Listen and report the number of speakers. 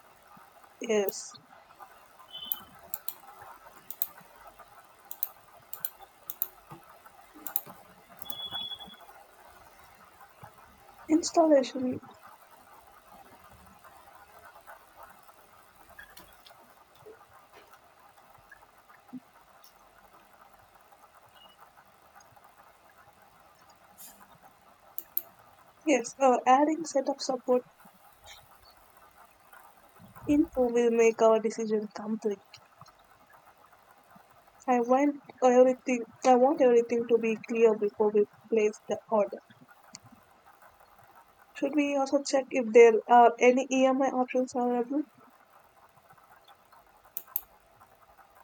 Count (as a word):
one